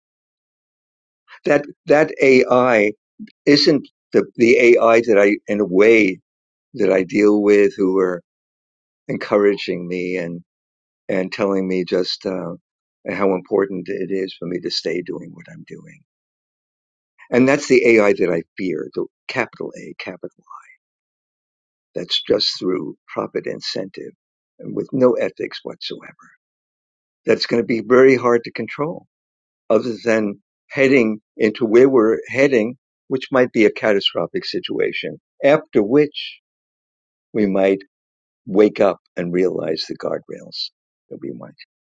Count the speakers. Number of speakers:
1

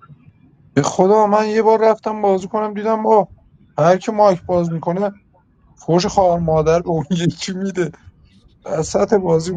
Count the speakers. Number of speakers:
1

